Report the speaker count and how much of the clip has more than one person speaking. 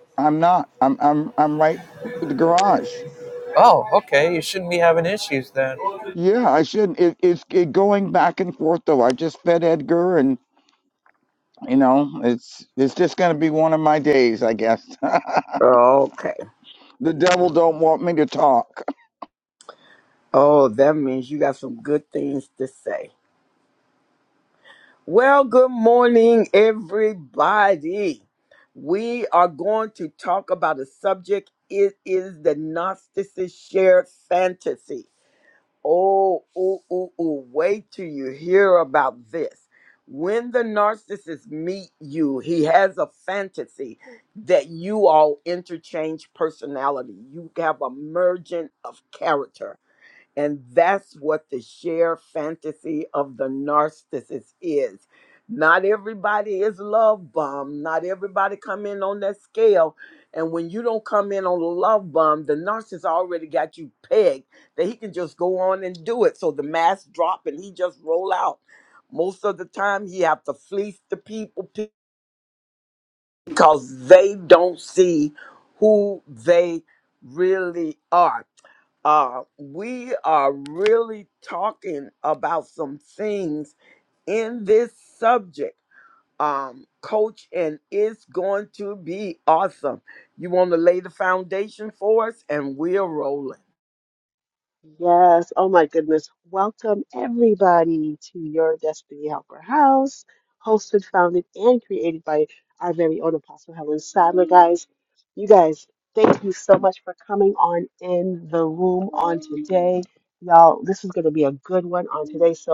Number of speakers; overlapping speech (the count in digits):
4, no overlap